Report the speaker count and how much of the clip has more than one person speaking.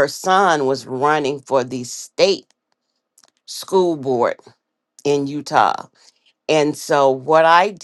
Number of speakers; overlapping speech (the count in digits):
1, no overlap